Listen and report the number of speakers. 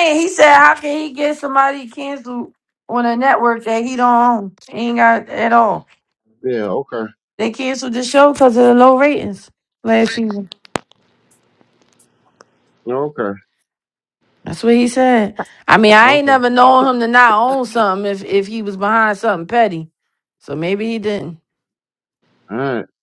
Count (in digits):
2